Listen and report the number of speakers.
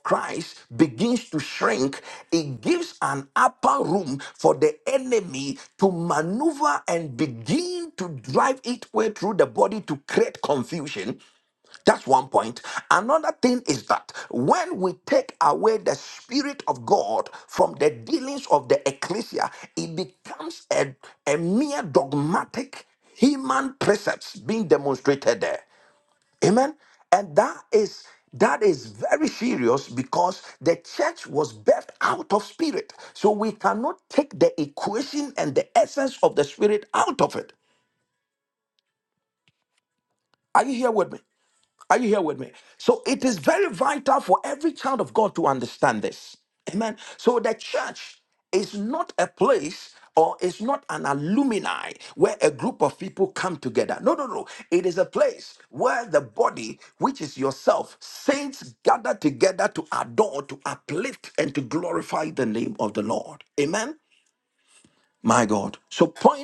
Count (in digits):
1